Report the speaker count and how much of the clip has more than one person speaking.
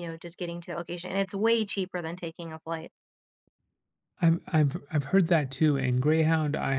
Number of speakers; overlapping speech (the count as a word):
two, no overlap